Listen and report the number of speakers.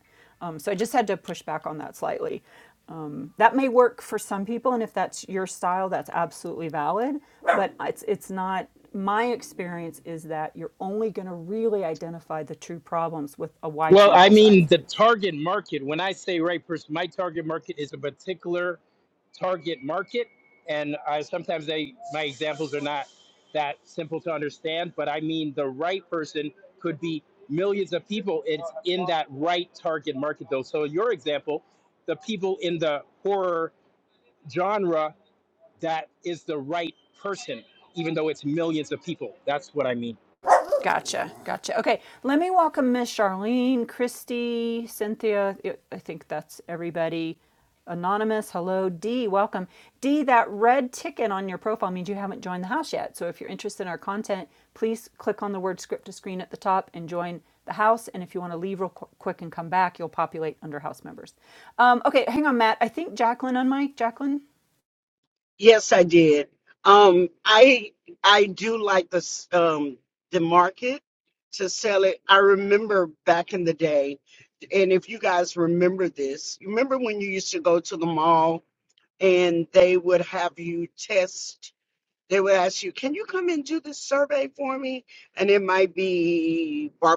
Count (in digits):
3